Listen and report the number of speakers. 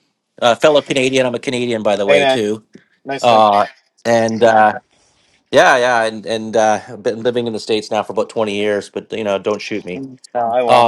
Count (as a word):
two